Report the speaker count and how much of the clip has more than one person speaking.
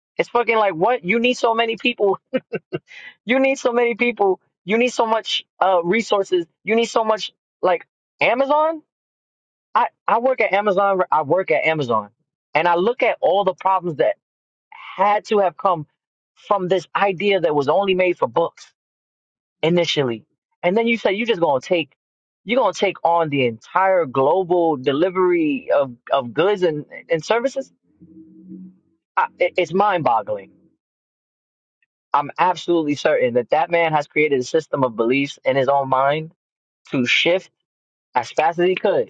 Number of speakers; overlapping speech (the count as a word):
one, no overlap